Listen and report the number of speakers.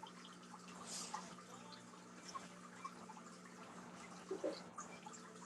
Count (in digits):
0